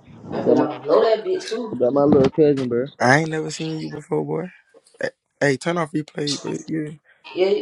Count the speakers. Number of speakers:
three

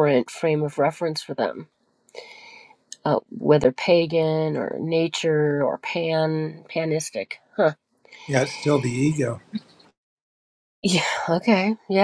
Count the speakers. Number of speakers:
two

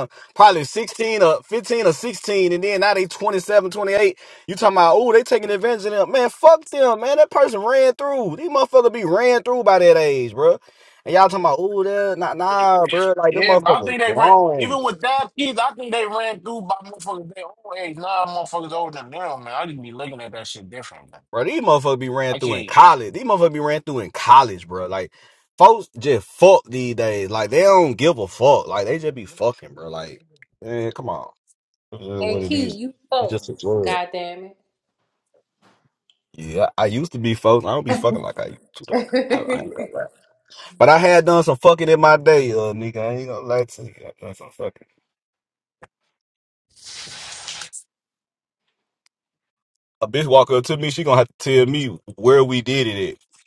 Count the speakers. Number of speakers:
three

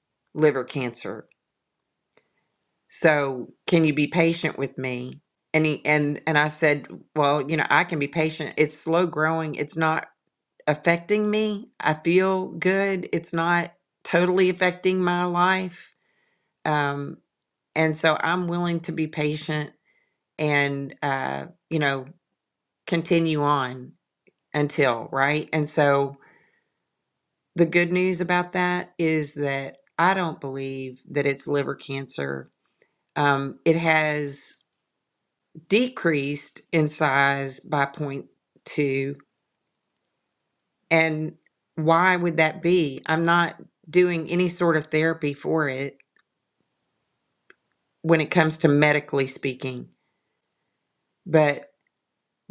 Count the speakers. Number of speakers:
one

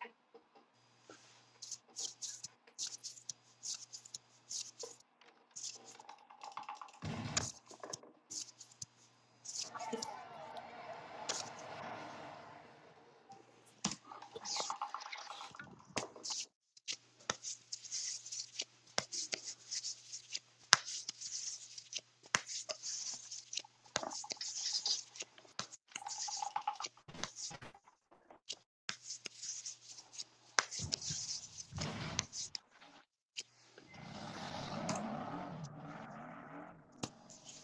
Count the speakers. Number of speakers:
zero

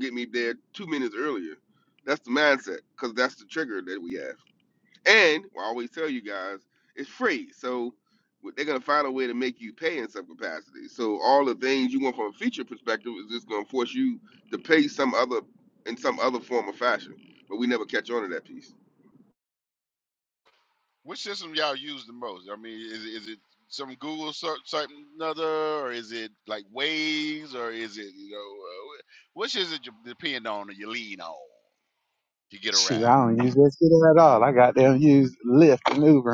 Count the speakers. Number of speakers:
three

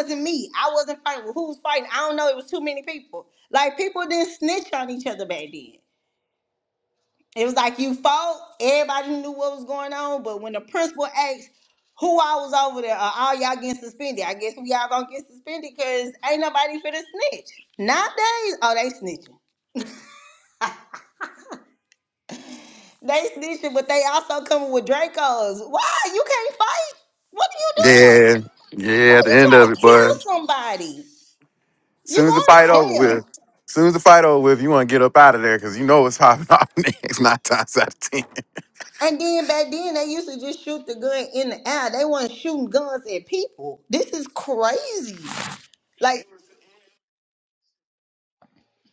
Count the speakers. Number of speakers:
two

